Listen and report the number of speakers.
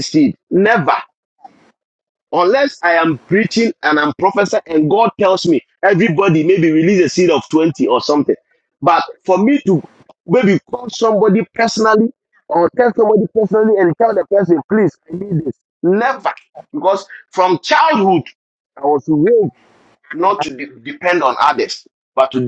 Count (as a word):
one